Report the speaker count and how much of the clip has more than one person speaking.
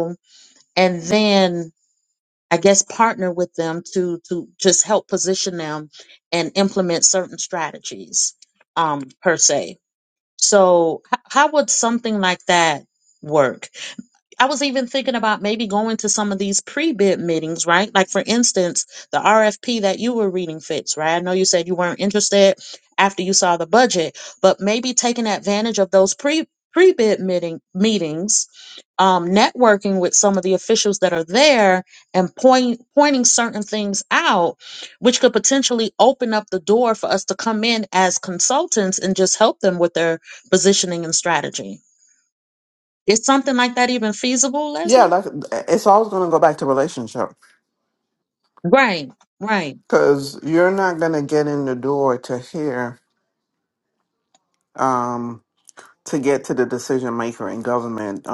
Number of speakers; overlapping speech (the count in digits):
2, under 1%